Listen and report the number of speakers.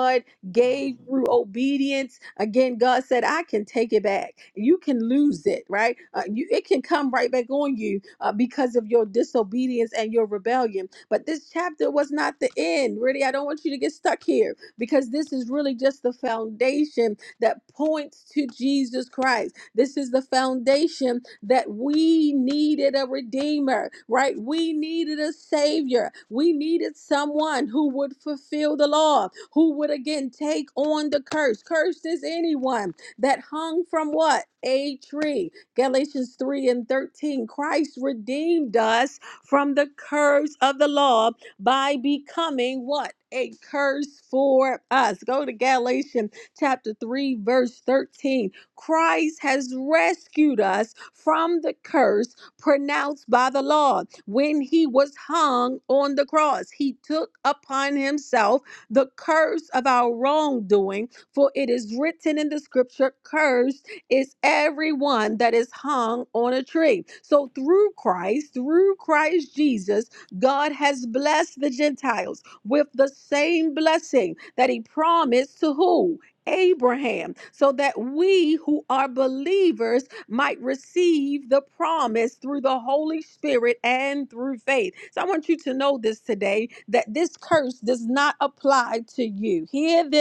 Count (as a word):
one